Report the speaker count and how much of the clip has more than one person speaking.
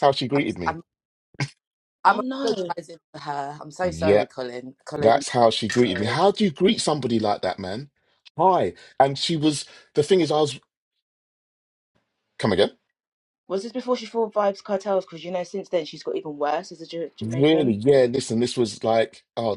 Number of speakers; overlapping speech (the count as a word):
three, about 14%